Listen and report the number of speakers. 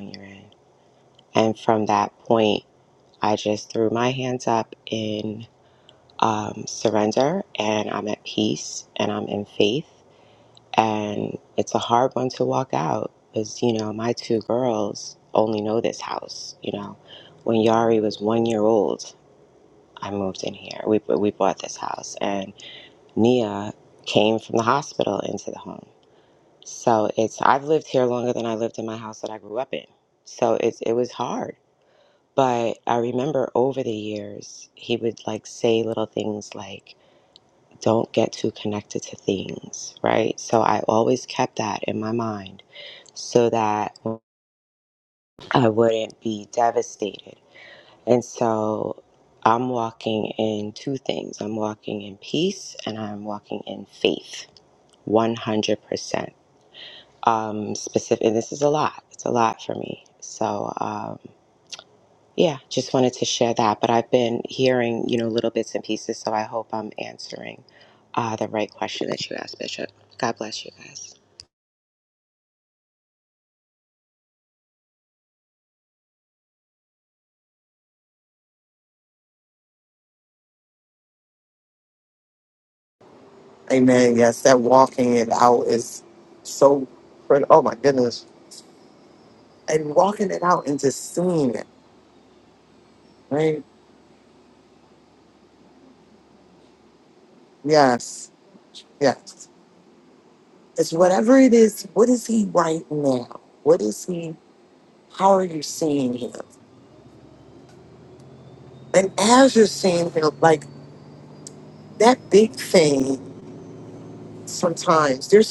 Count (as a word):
two